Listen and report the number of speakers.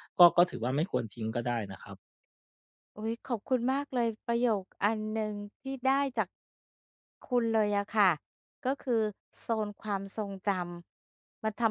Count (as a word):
two